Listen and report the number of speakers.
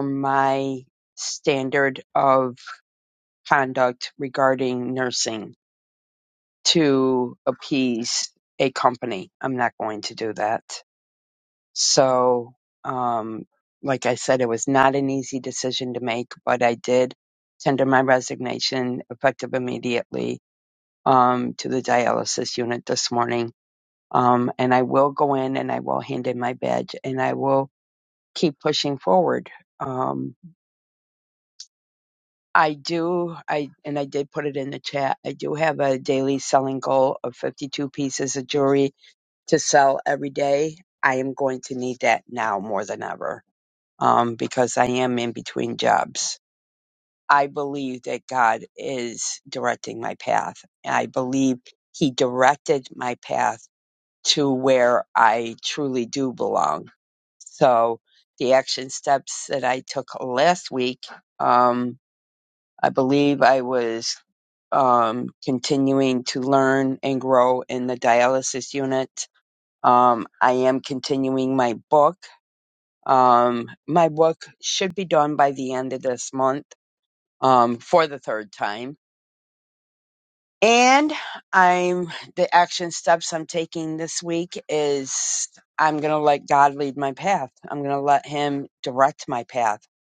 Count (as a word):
one